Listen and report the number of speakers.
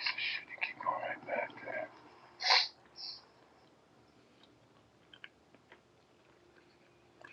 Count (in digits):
0